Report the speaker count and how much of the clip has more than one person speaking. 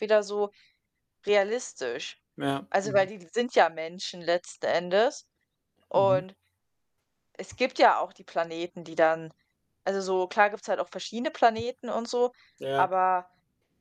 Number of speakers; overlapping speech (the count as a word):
two, about 5%